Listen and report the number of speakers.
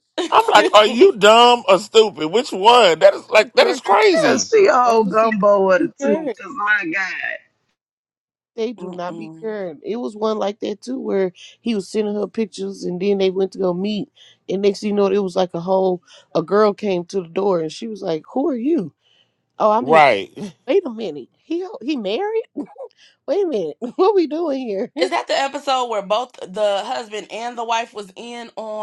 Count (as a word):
four